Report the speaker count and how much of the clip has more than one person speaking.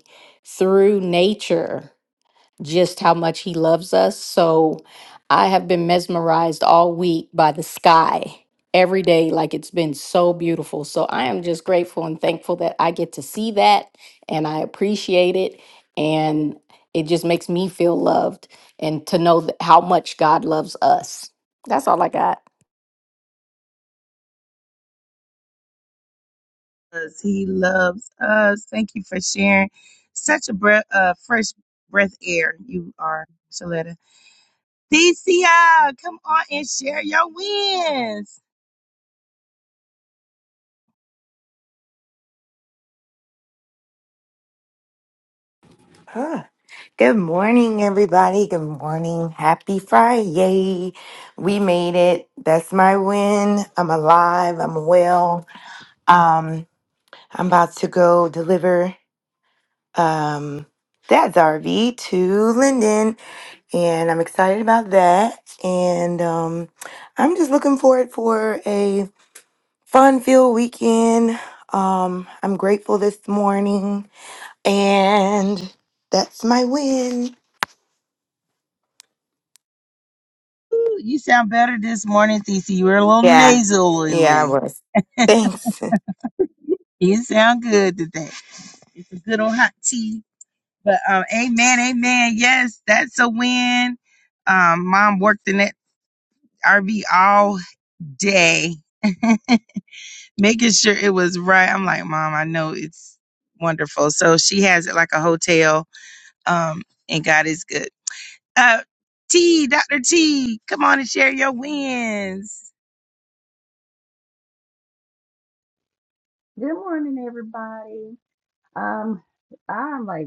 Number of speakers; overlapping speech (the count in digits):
4, under 1%